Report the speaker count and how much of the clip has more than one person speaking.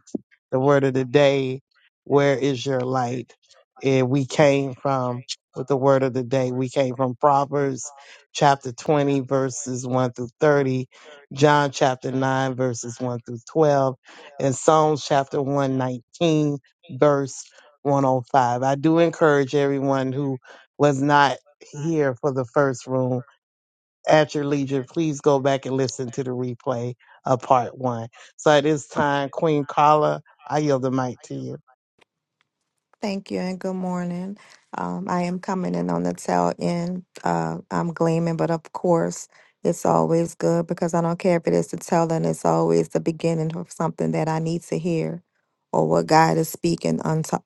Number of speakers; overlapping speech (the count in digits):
2, no overlap